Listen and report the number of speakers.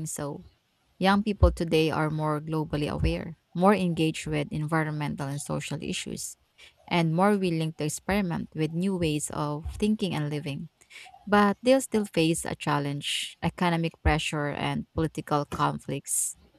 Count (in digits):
1